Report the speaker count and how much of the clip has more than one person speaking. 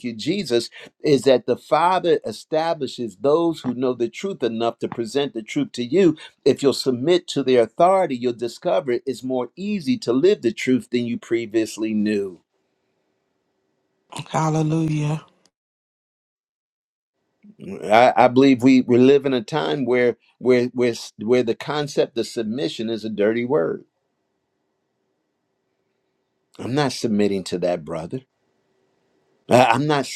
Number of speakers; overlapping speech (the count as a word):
two, no overlap